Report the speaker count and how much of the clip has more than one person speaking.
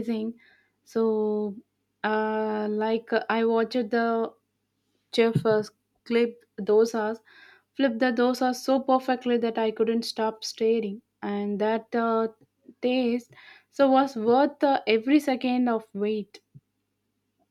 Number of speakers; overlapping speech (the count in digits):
1, no overlap